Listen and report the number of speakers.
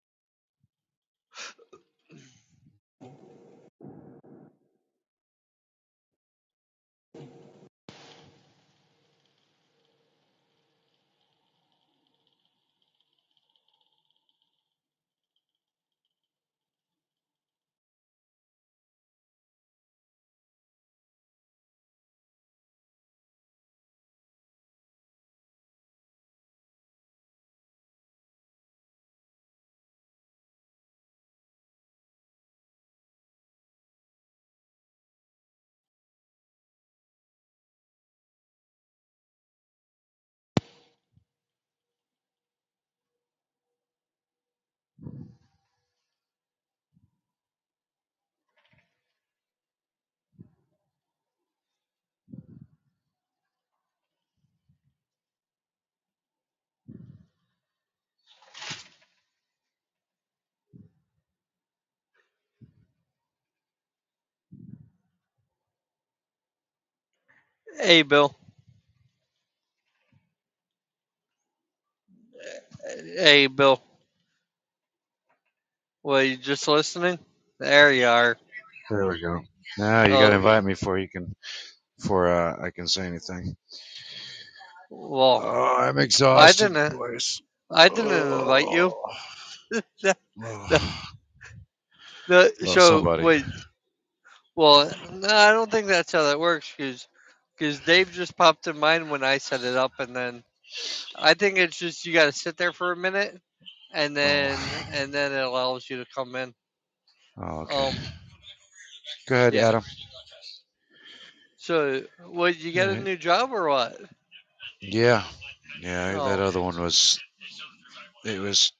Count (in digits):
2